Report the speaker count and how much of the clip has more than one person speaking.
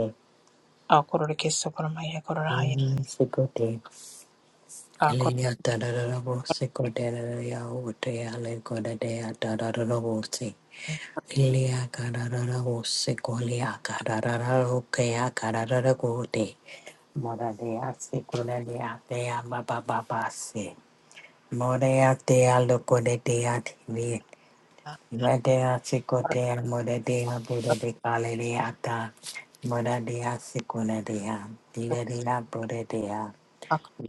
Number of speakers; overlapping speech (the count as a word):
two, about 1%